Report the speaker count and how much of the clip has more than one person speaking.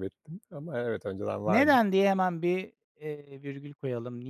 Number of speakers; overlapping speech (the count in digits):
2, about 6%